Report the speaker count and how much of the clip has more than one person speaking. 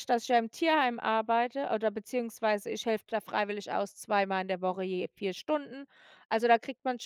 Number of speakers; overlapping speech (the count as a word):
one, no overlap